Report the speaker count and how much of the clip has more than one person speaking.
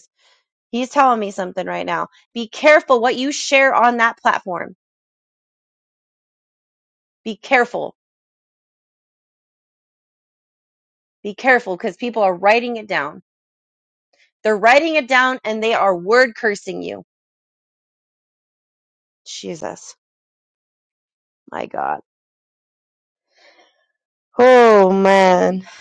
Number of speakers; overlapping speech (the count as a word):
one, no overlap